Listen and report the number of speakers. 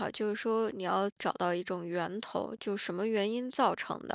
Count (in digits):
1